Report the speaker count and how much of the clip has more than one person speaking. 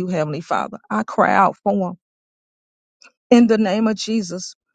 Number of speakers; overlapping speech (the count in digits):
1, no overlap